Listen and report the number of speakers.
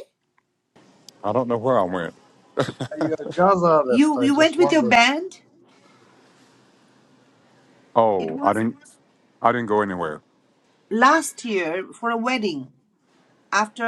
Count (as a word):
three